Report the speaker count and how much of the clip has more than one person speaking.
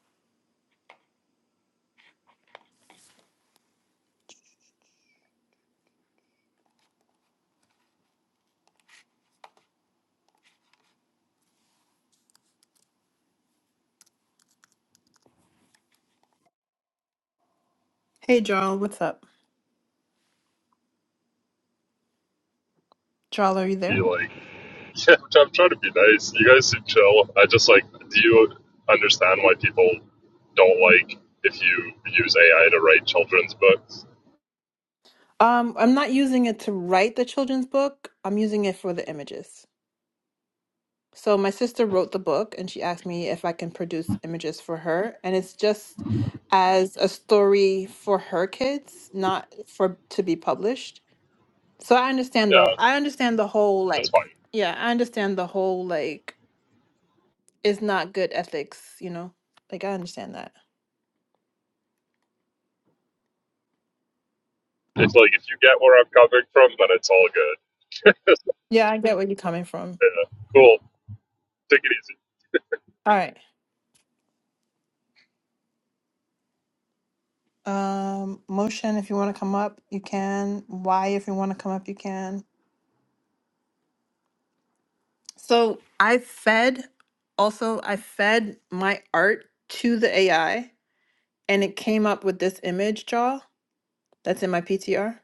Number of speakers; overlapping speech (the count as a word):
two, about 1%